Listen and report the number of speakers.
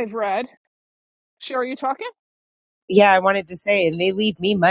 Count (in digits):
2